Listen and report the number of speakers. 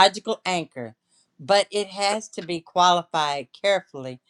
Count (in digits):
1